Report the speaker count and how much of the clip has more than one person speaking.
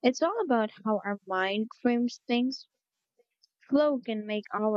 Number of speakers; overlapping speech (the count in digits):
1, no overlap